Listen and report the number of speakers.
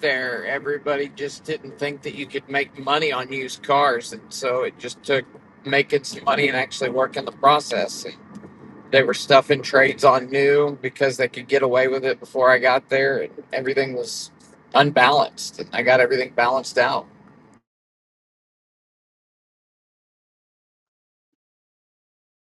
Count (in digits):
1